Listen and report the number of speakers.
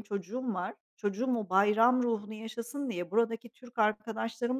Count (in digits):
1